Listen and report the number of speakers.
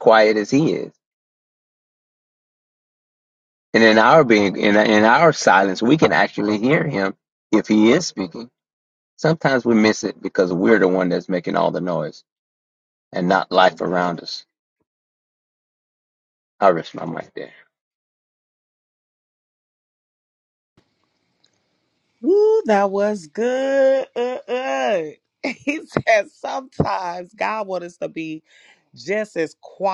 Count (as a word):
two